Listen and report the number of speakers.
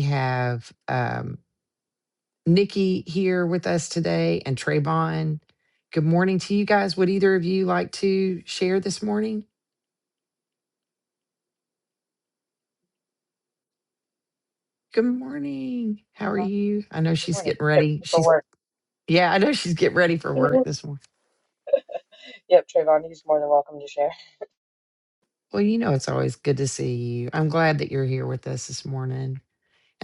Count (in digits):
2